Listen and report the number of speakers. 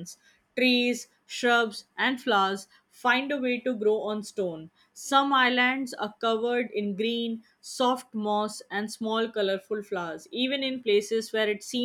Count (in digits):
1